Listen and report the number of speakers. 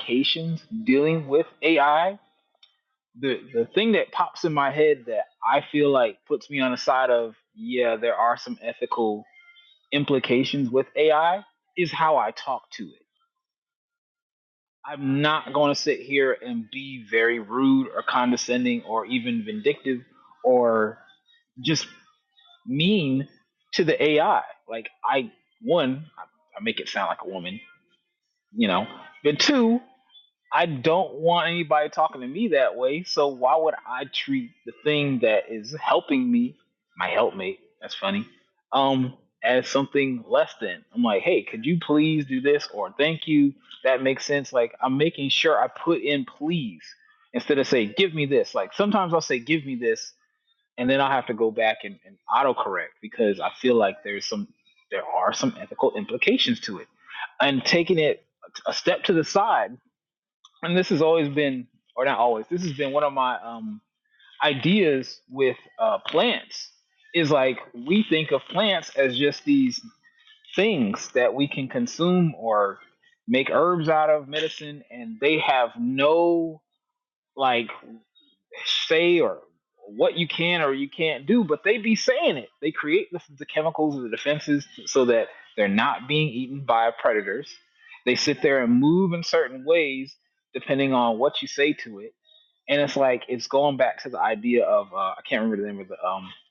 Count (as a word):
one